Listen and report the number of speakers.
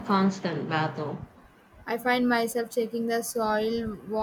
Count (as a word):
two